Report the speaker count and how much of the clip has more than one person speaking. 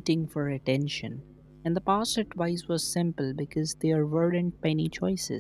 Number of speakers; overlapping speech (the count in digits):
1, no overlap